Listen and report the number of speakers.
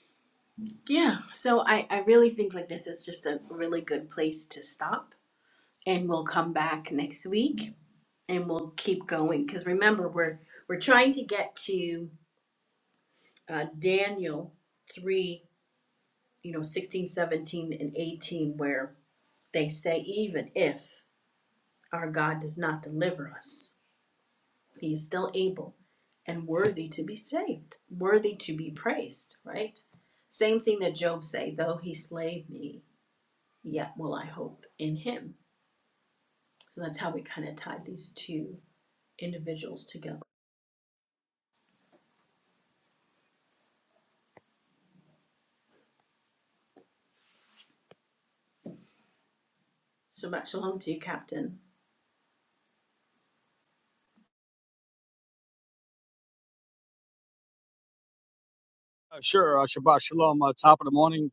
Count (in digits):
2